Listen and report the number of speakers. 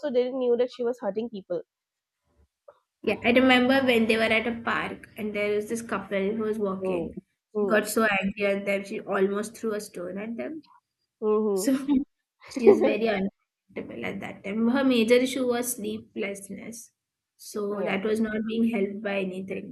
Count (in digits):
2